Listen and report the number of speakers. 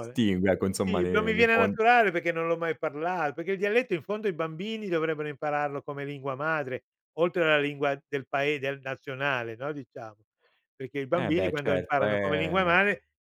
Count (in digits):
2